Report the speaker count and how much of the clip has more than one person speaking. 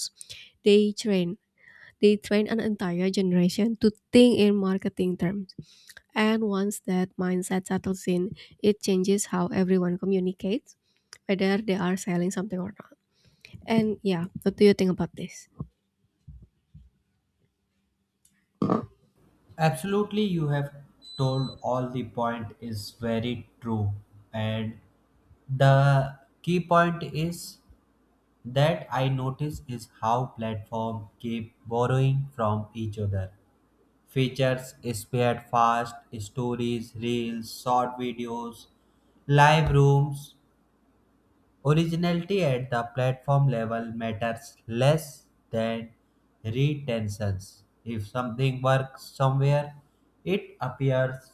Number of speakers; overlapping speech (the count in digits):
2, no overlap